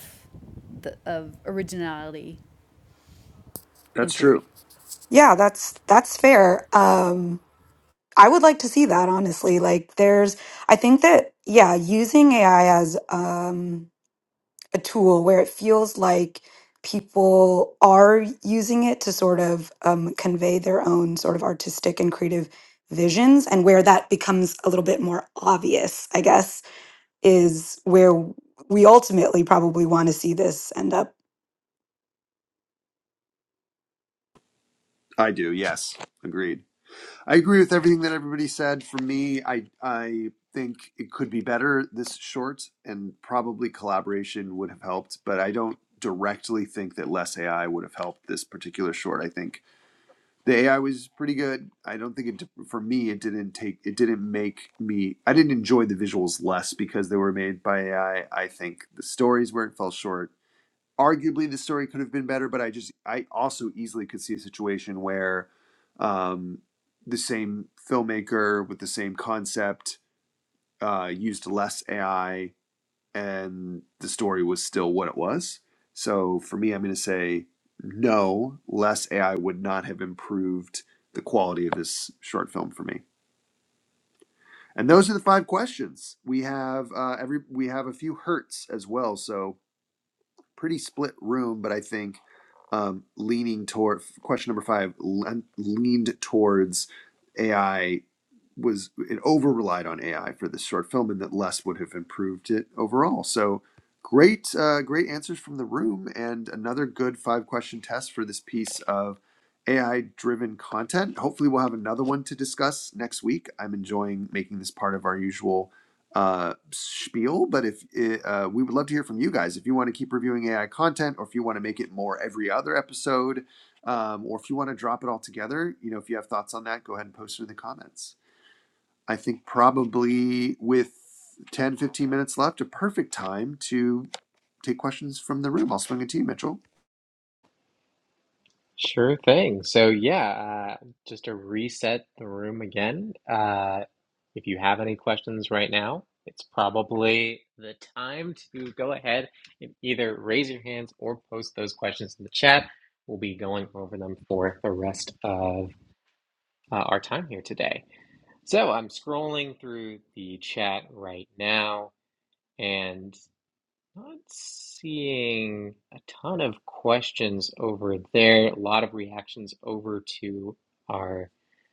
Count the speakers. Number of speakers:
4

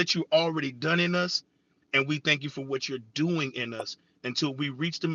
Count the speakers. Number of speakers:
1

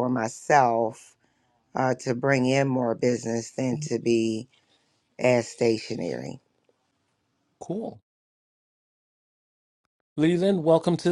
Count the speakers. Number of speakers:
2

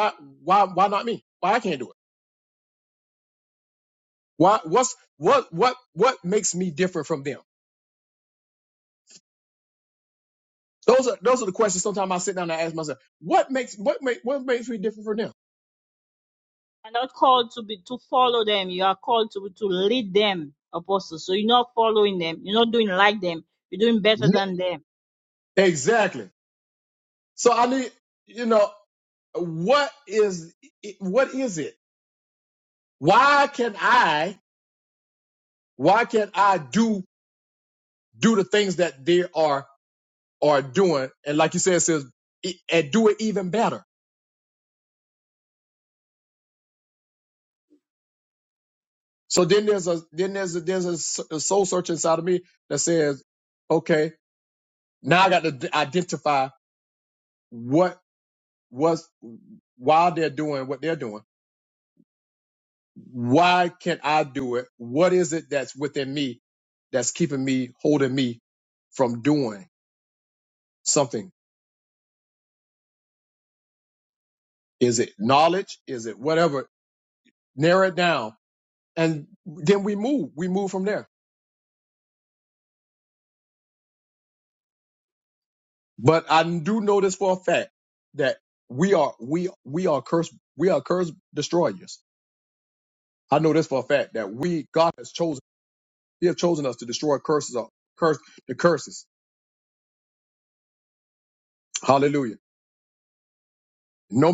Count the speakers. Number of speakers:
2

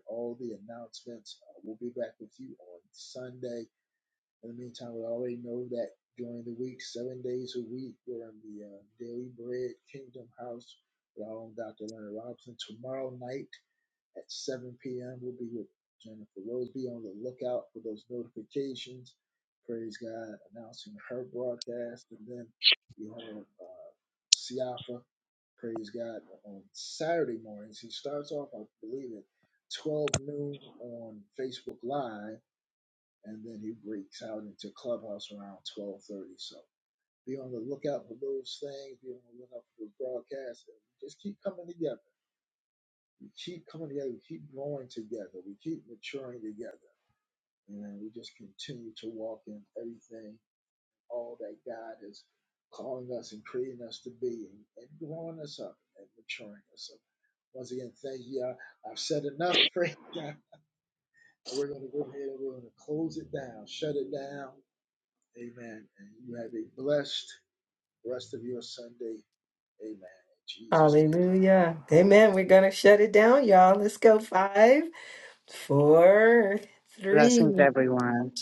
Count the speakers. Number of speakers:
3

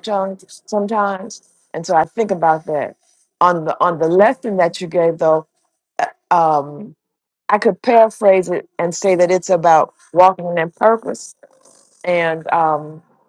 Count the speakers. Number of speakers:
1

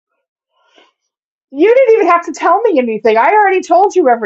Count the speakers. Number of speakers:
1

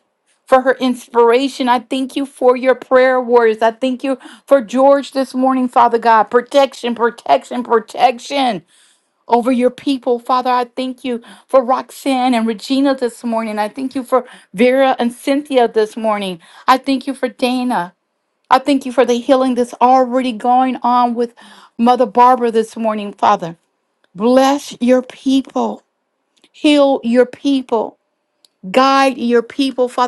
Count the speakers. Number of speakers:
1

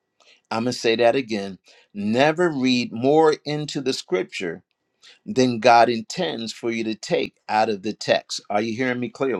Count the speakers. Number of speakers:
1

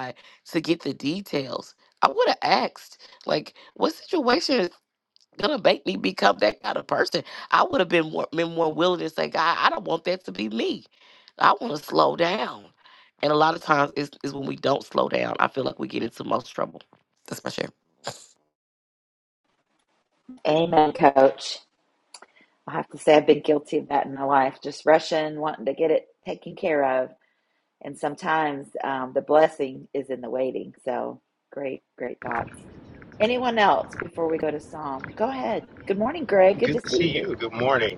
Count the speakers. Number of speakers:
3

